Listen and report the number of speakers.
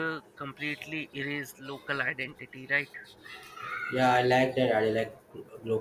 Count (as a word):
two